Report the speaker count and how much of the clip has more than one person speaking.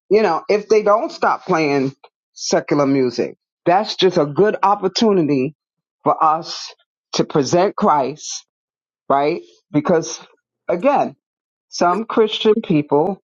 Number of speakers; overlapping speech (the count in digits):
1, no overlap